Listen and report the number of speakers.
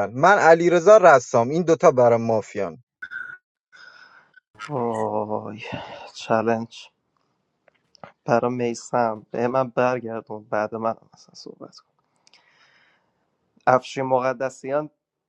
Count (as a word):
two